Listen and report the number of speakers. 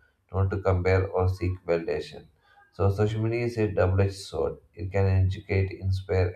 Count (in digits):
1